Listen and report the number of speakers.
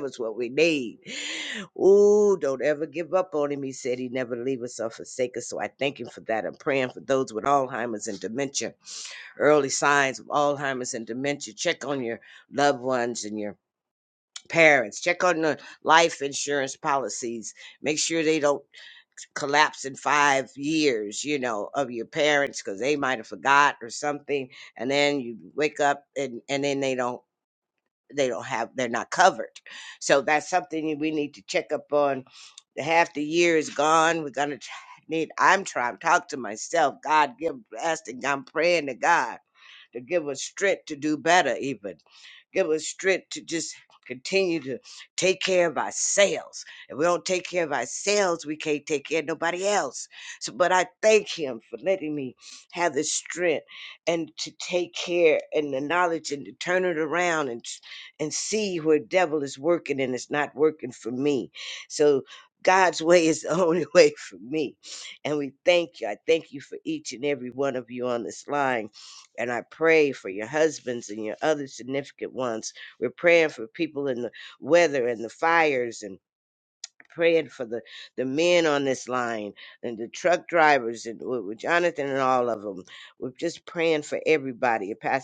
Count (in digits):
1